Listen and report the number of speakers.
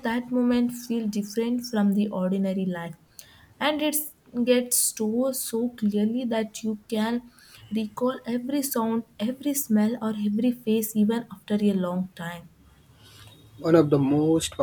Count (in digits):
2